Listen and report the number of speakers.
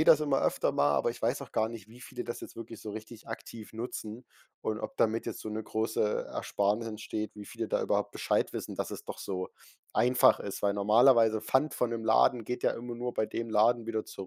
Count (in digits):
1